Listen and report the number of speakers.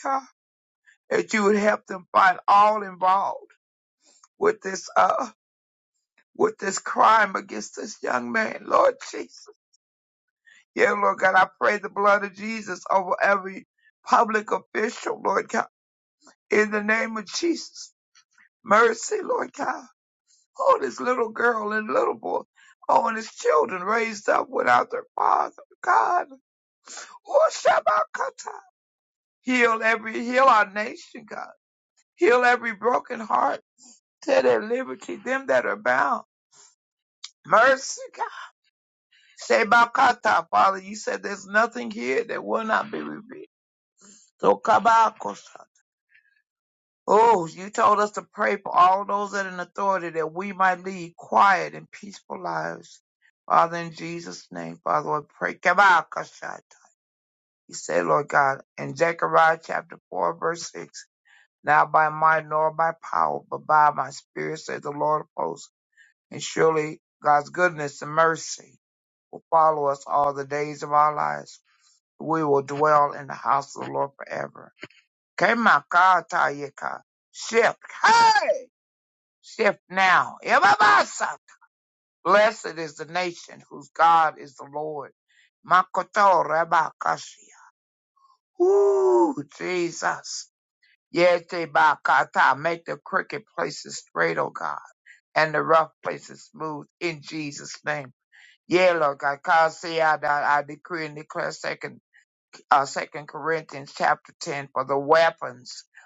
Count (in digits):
1